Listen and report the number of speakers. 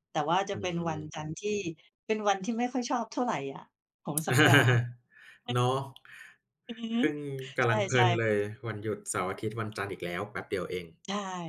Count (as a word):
two